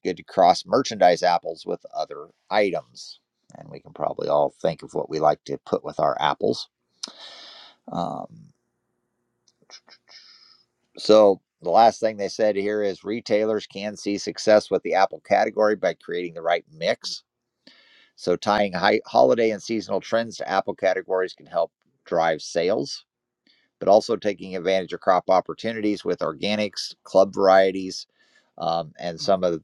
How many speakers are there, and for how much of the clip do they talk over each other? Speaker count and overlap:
1, no overlap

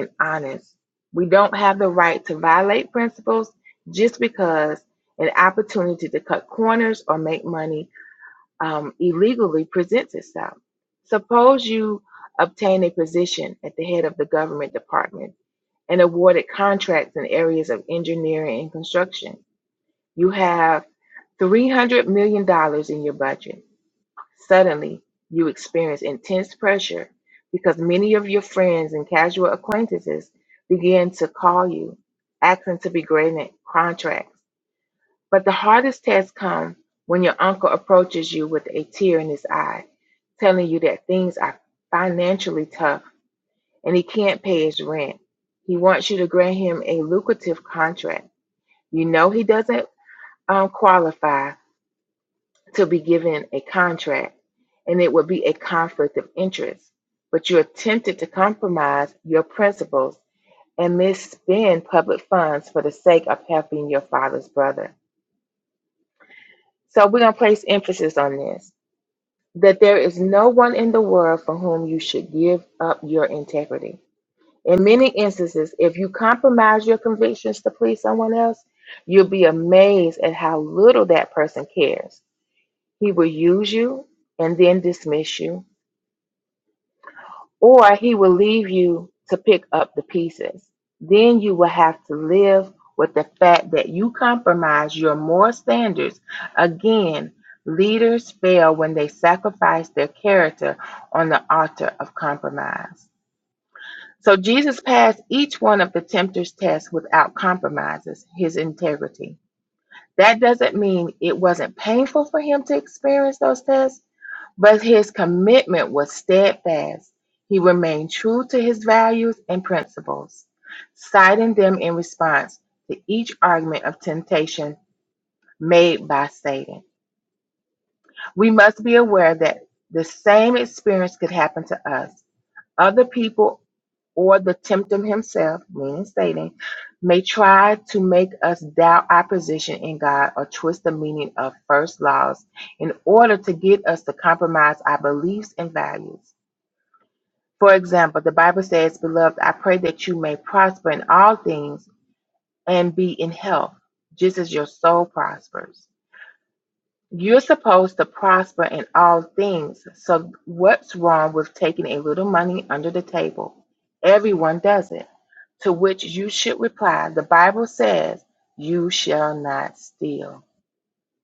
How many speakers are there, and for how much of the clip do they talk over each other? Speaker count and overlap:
1, no overlap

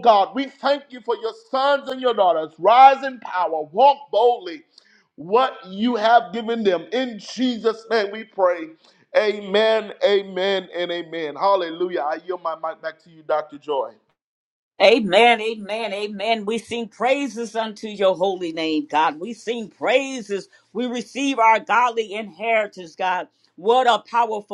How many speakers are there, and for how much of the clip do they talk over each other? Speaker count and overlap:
2, no overlap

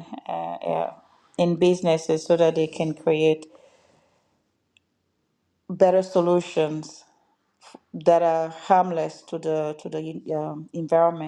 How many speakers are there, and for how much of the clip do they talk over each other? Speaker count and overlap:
1, no overlap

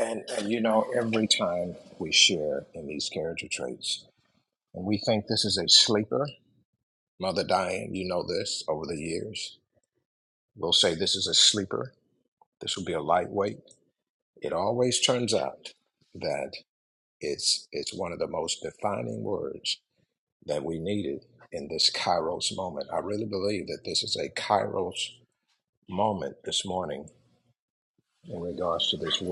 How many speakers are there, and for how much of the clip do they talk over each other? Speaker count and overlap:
1, no overlap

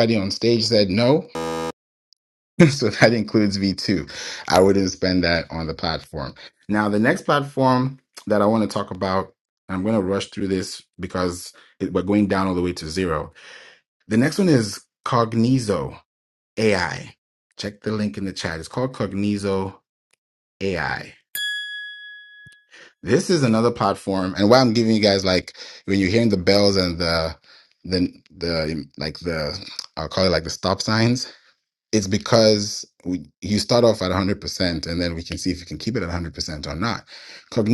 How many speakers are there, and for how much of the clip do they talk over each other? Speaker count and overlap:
1, no overlap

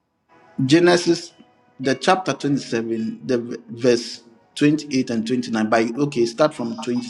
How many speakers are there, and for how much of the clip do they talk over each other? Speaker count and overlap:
1, no overlap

